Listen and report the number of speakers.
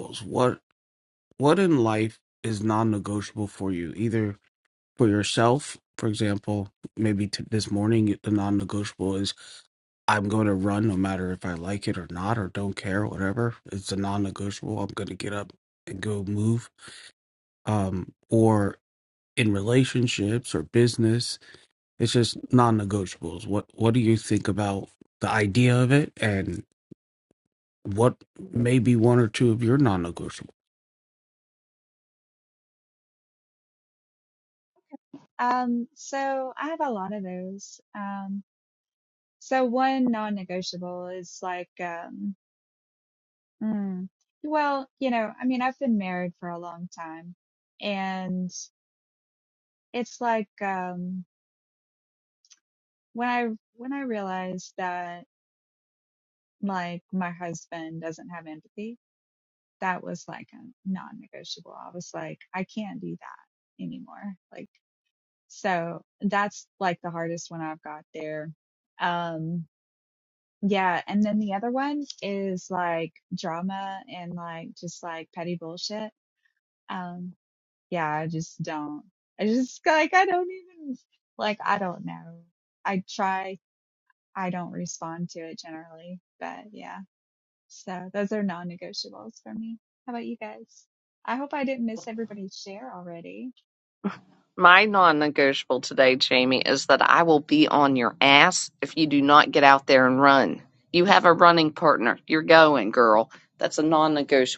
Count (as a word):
three